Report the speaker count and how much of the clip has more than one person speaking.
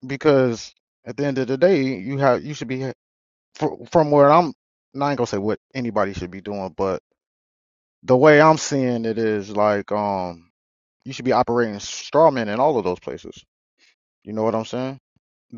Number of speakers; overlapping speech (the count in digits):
1, no overlap